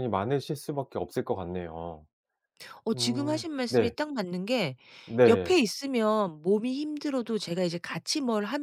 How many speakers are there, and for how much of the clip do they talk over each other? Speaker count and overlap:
two, about 15%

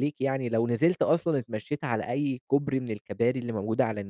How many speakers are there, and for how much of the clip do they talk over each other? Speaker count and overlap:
one, no overlap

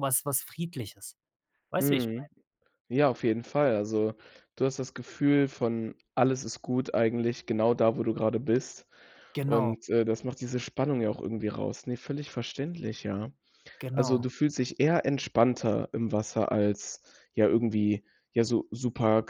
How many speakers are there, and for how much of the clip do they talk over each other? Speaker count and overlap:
two, about 5%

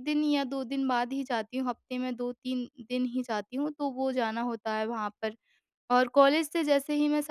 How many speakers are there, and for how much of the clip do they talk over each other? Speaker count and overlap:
one, no overlap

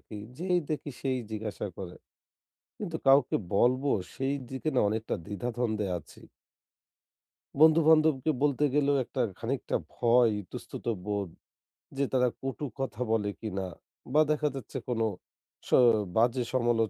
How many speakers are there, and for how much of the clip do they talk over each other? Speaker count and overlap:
one, no overlap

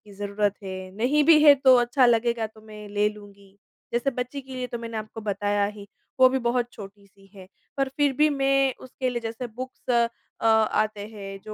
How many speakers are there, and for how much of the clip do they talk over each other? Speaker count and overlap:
one, no overlap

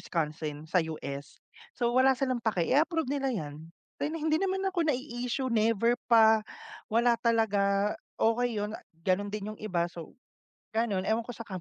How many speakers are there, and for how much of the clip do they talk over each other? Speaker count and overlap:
one, no overlap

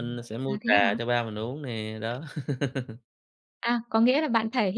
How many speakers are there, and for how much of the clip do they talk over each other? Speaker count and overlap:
two, about 10%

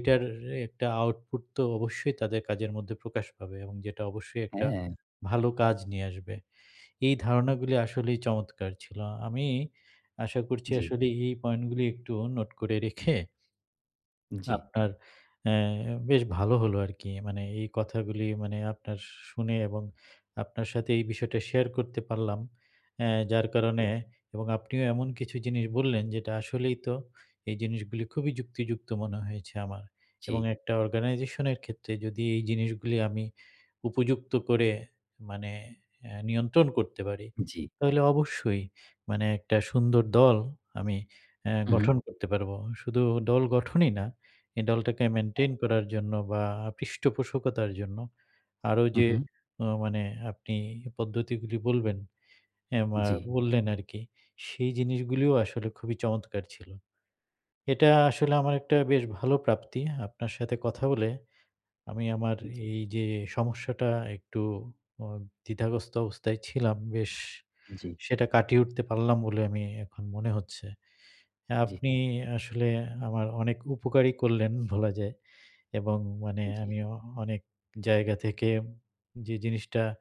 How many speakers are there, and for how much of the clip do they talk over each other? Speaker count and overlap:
two, about 2%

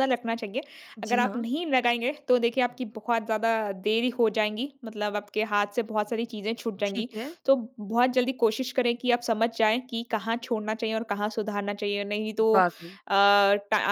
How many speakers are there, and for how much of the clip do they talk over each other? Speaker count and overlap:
two, about 5%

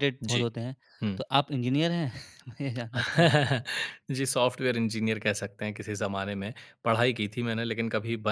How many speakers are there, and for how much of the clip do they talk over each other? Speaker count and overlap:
two, about 3%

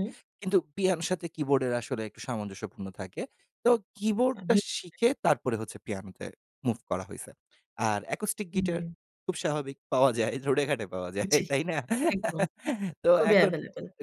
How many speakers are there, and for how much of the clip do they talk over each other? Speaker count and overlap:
two, about 8%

